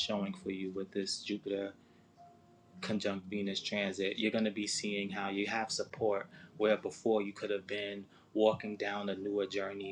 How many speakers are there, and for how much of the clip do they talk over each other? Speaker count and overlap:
one, no overlap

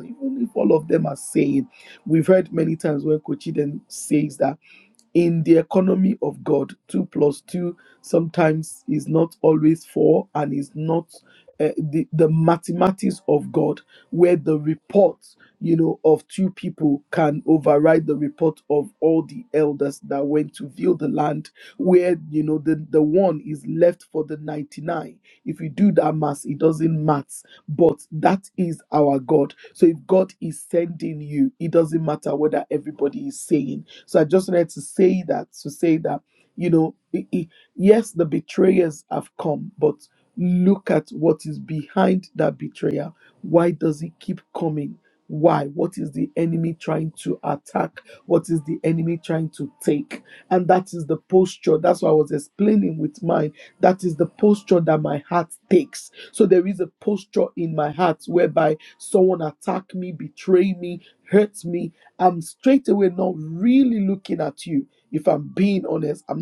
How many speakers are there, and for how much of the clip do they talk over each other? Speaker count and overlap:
one, no overlap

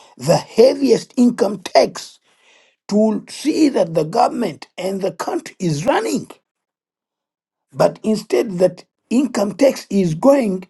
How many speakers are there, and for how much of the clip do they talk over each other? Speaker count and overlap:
one, no overlap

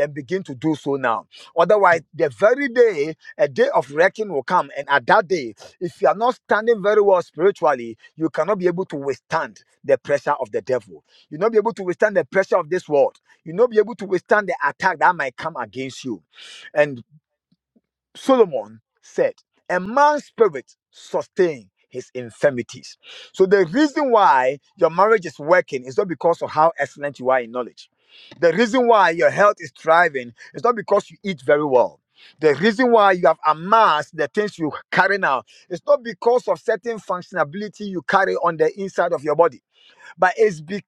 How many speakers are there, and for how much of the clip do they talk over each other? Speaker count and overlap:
one, no overlap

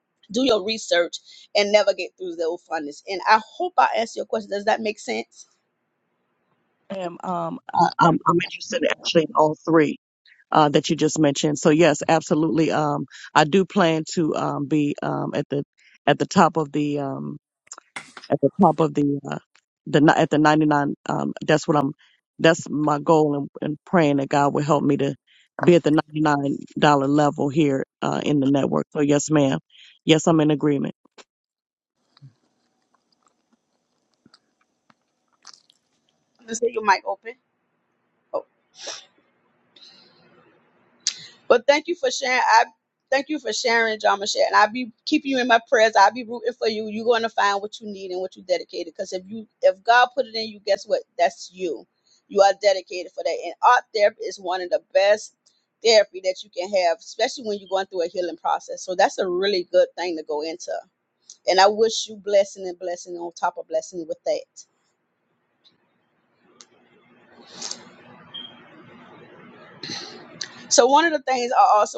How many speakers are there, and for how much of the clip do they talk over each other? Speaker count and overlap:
two, under 1%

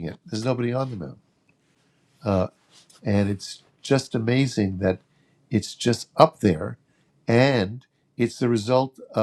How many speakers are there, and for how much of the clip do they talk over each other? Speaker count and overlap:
one, no overlap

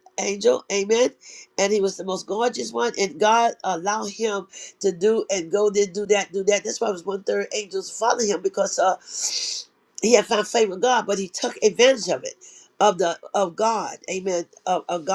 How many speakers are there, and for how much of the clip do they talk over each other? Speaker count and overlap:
one, no overlap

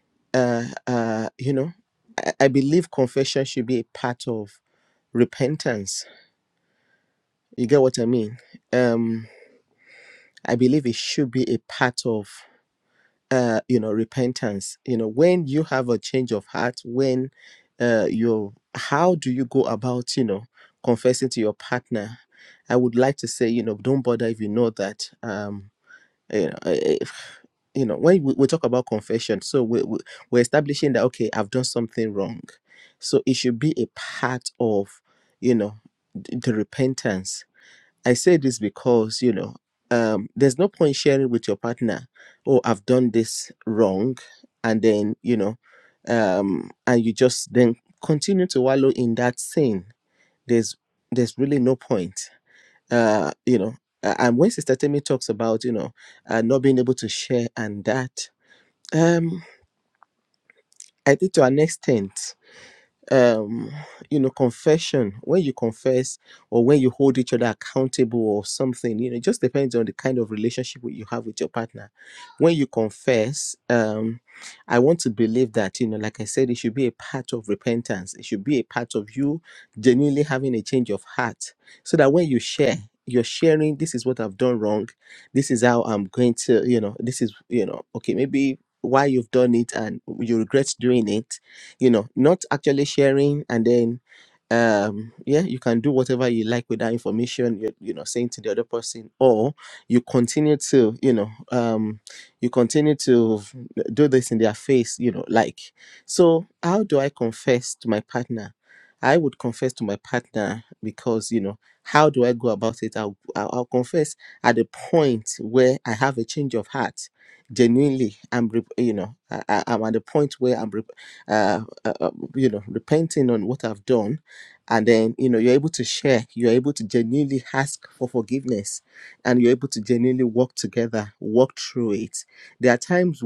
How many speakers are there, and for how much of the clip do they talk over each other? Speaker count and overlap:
one, no overlap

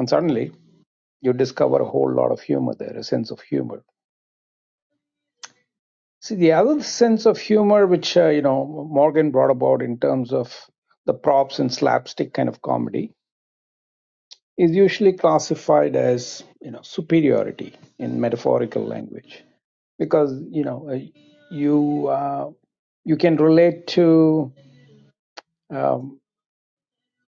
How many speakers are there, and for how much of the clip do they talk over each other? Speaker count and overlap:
one, no overlap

